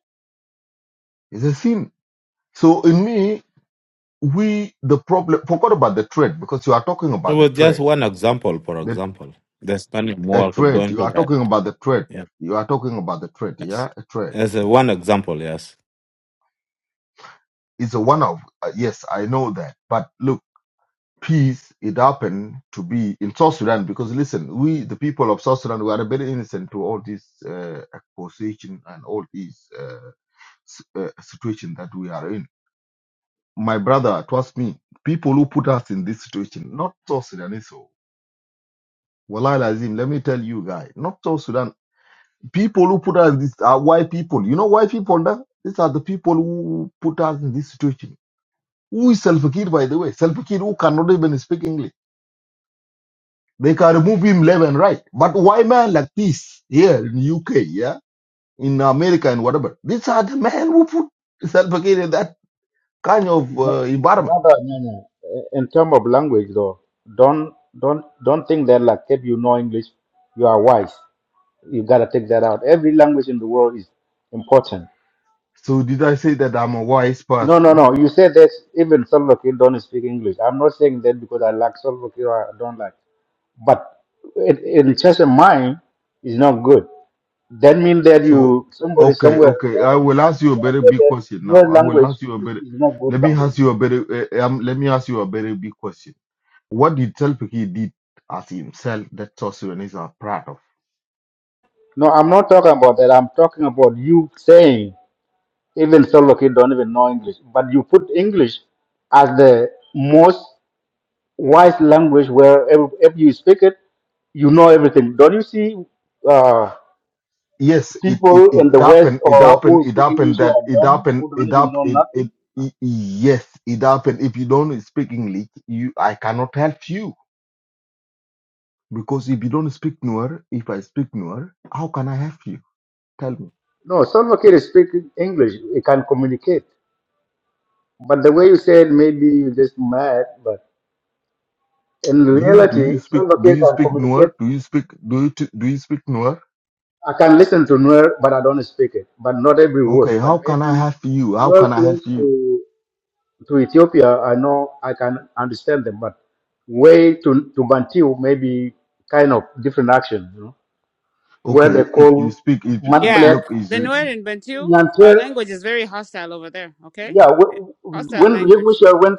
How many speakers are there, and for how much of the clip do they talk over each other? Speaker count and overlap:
four, about 10%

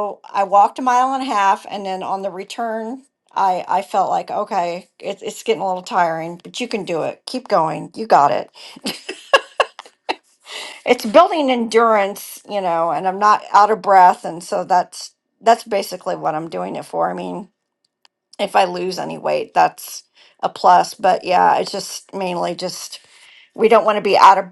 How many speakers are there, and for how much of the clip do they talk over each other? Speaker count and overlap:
one, no overlap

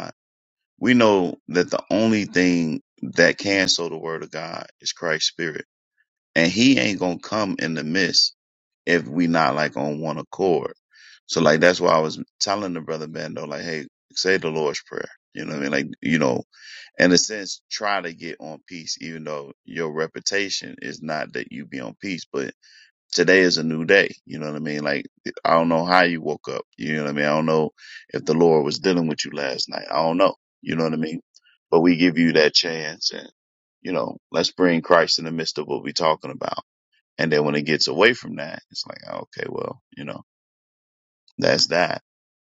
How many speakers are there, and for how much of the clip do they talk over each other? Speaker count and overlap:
one, no overlap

